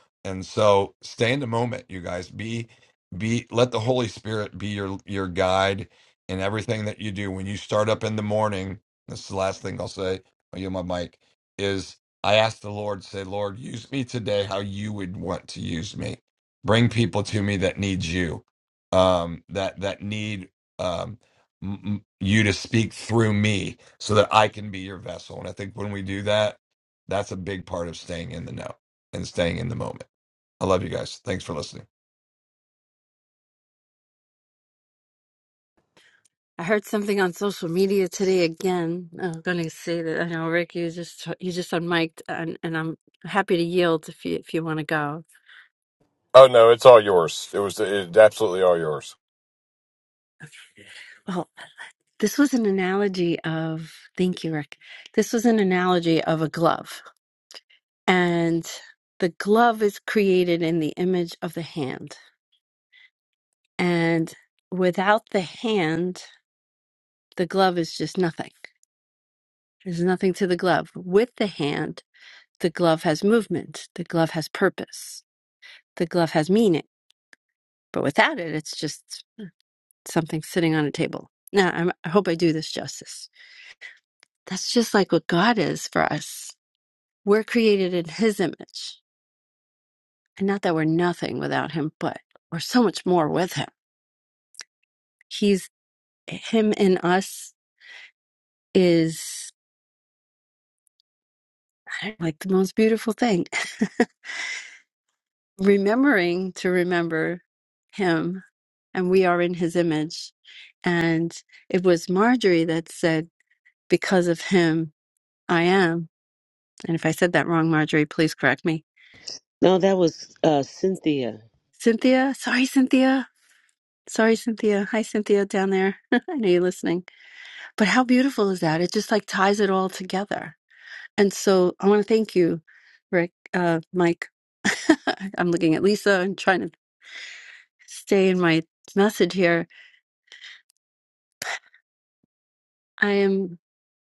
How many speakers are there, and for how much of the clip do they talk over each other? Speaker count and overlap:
4, no overlap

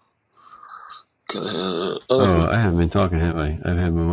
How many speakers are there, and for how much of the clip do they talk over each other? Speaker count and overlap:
2, about 8%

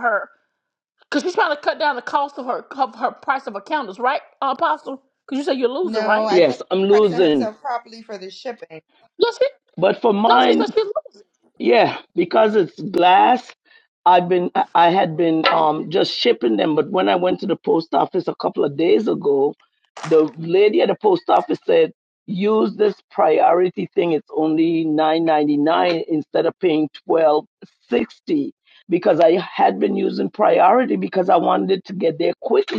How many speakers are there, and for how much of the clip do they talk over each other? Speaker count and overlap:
3, about 5%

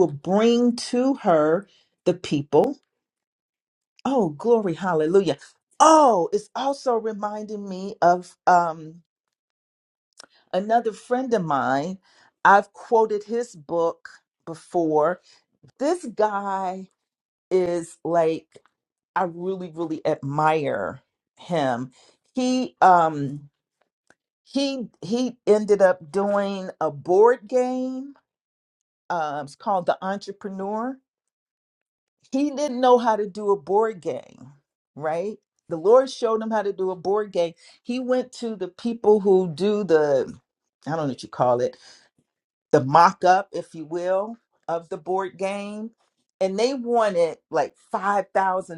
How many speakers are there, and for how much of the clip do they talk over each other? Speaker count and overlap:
1, no overlap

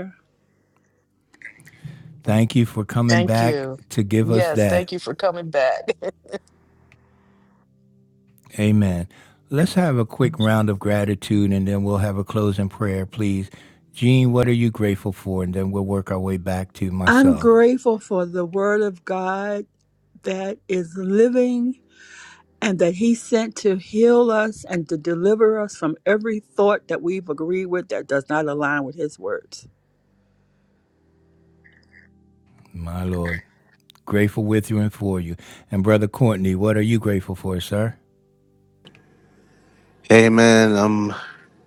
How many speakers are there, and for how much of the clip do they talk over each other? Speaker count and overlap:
4, about 4%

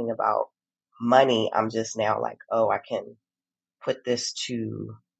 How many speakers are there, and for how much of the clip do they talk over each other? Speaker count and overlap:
1, no overlap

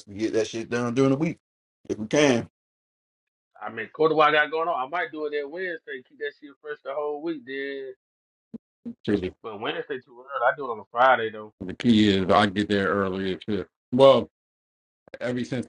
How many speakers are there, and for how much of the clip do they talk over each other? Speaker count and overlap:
3, no overlap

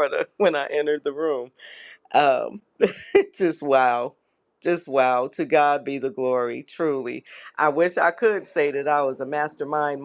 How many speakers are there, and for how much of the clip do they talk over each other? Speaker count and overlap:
1, no overlap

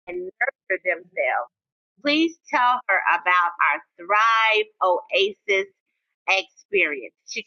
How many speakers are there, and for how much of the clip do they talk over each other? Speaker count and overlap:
1, no overlap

